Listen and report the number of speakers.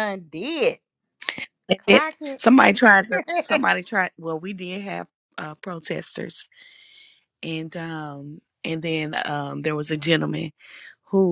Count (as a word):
two